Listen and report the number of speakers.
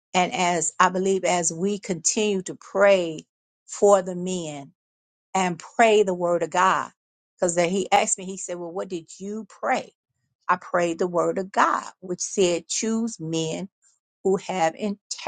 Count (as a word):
one